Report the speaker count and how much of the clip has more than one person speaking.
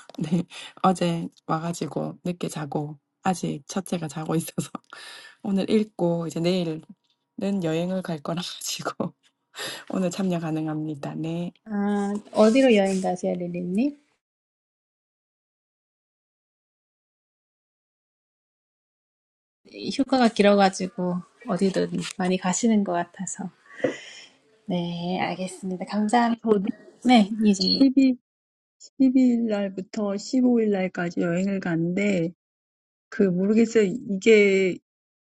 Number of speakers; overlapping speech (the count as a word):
three, under 1%